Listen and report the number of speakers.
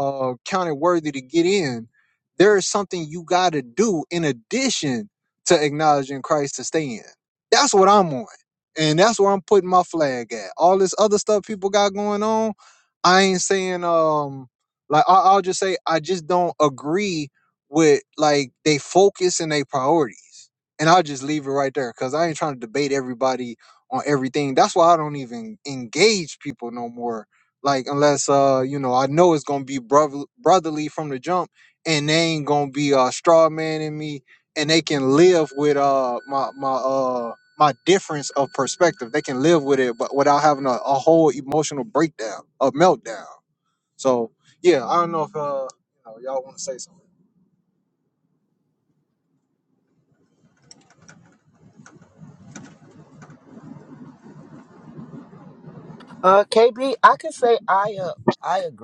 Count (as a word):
two